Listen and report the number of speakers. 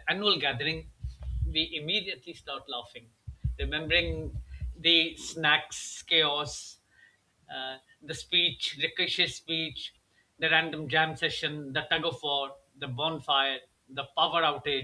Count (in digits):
1